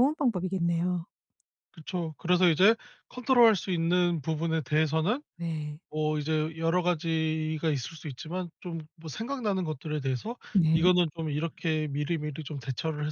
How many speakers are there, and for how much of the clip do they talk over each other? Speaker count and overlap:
two, about 1%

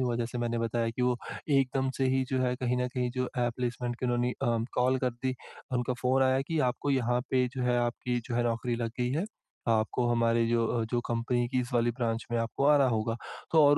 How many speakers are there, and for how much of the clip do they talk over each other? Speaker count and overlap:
one, no overlap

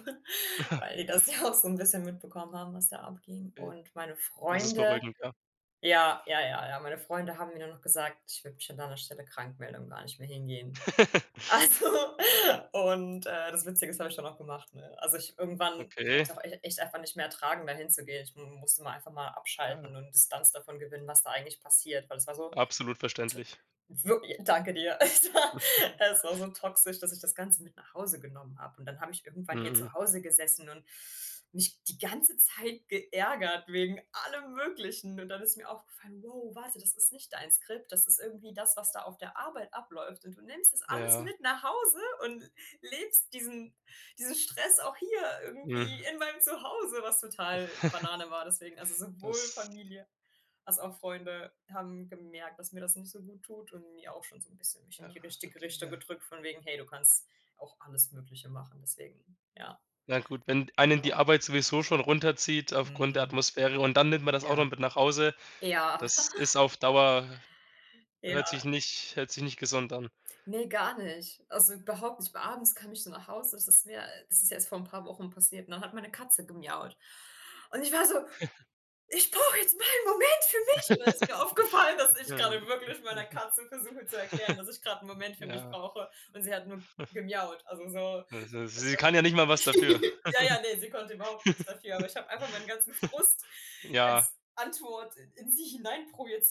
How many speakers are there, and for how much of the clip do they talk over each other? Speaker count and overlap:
two, about 5%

